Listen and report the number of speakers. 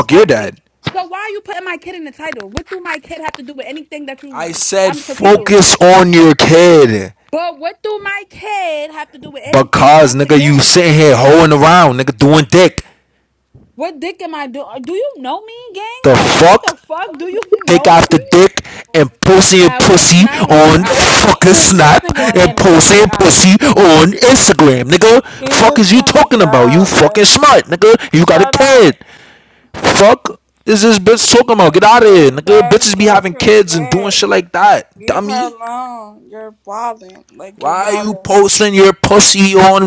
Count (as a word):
three